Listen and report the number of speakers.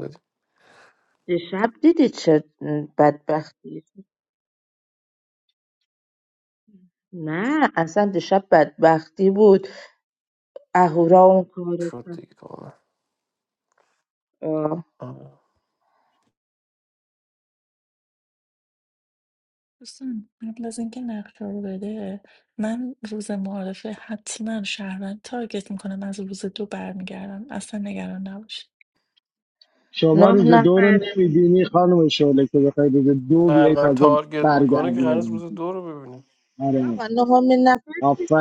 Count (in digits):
4